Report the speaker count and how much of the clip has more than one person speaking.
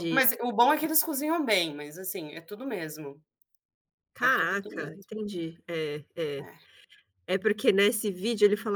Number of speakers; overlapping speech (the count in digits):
2, about 12%